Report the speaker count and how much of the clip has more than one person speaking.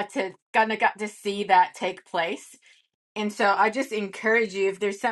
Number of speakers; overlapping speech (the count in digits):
1, no overlap